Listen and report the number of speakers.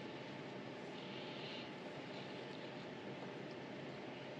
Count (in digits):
0